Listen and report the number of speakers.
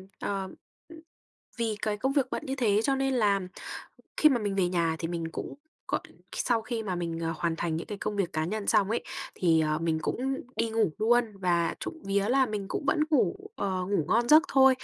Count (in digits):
1